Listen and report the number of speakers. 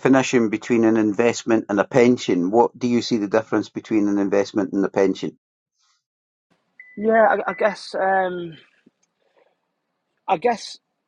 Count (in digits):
2